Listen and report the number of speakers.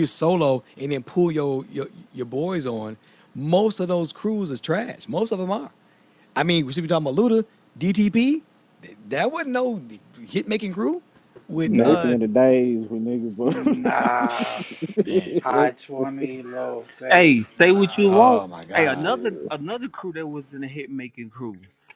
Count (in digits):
4